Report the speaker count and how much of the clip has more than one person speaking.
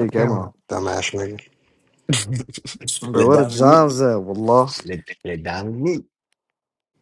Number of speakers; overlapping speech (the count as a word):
three, about 18%